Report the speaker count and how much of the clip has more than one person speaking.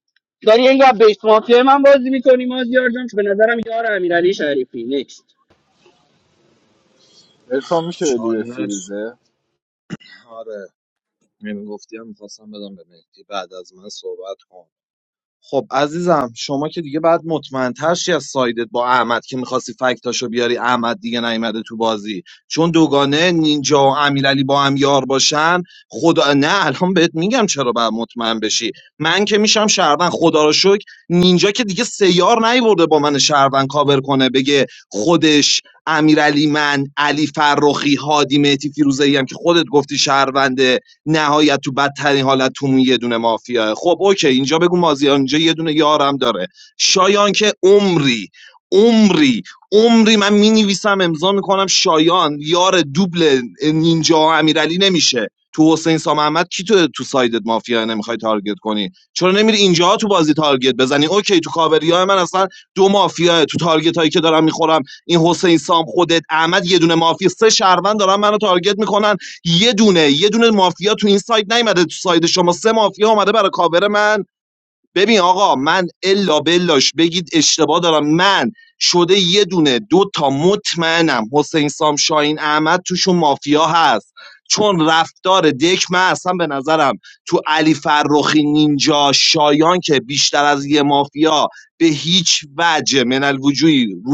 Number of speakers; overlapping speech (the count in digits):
3, about 1%